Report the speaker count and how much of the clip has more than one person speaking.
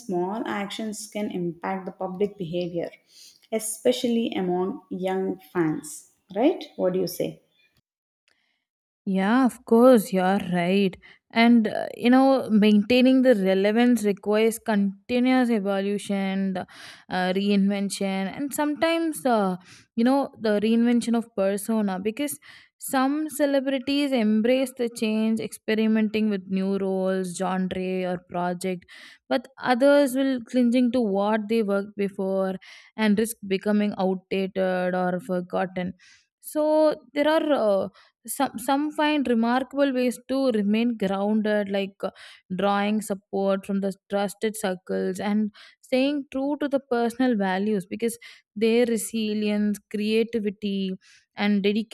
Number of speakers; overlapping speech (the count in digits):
2, no overlap